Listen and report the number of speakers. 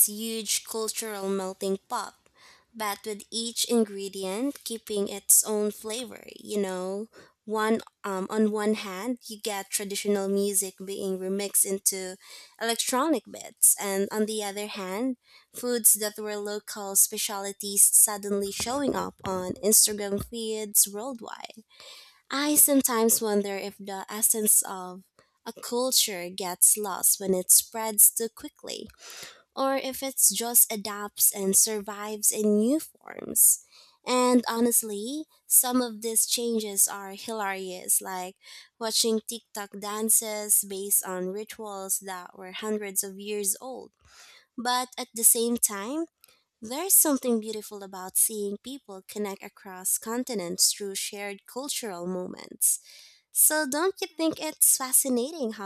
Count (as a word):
one